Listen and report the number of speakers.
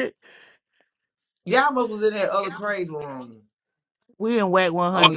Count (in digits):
2